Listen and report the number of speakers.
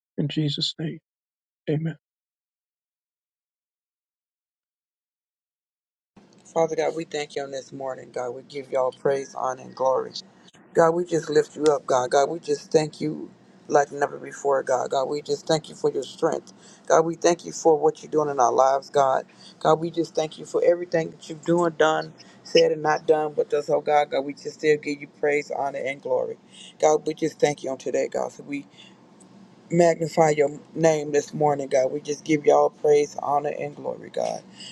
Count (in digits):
2